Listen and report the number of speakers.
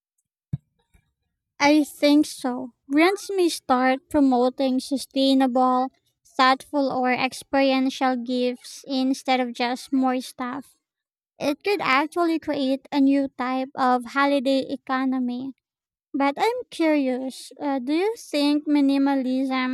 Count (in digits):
1